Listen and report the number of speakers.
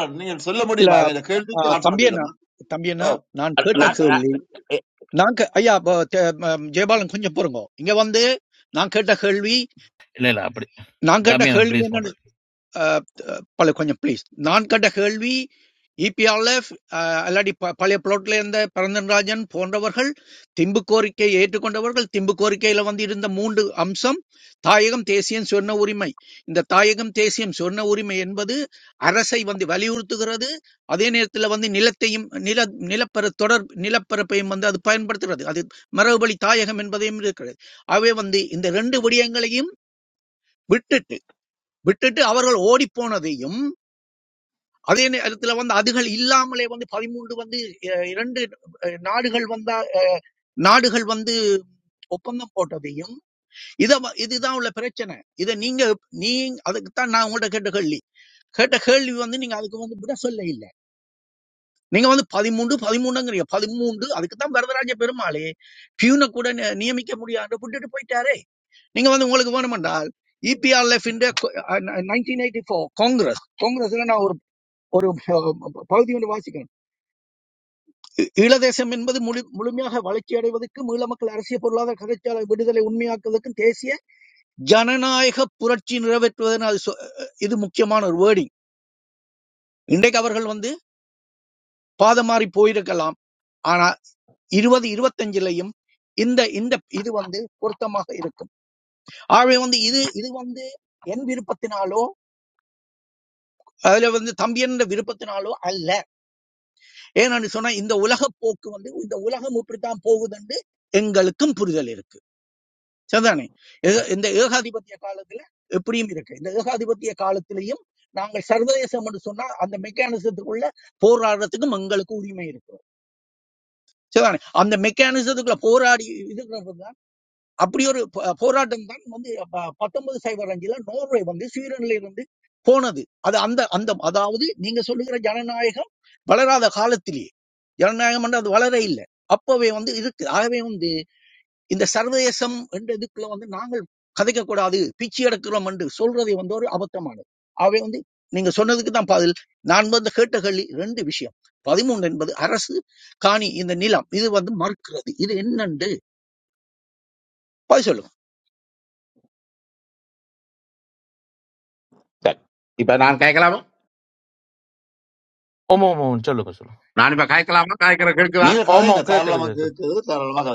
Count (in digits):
4